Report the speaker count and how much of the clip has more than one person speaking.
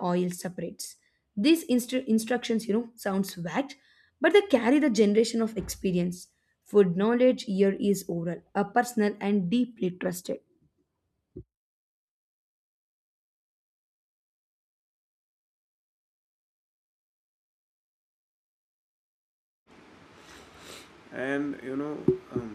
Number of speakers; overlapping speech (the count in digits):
2, no overlap